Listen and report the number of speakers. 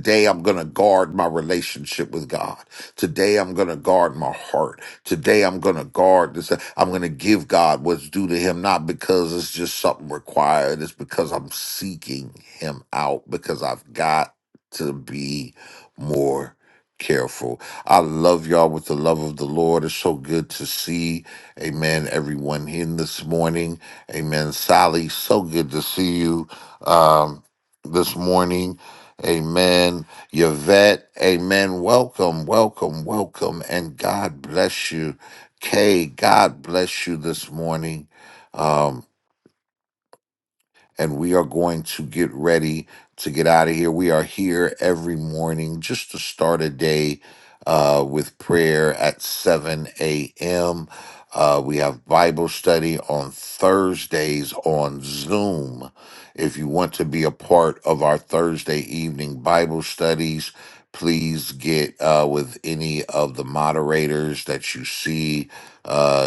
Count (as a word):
one